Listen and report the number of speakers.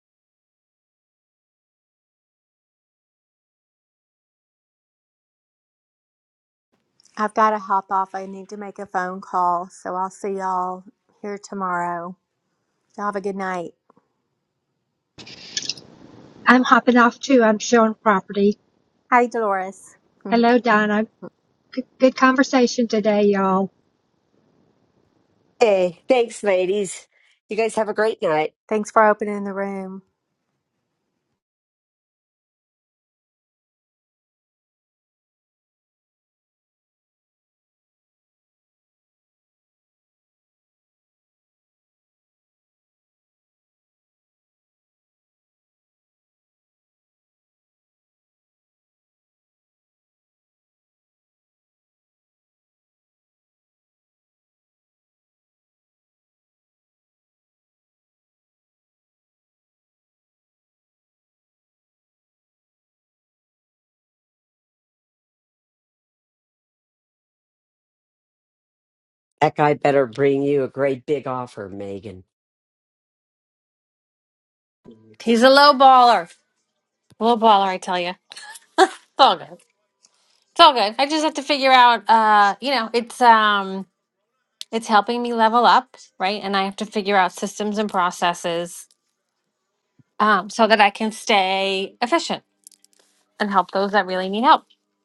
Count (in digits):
4